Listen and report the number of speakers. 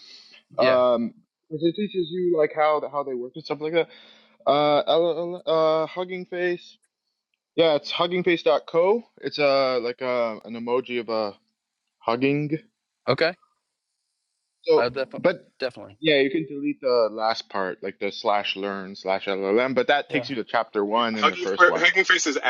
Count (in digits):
3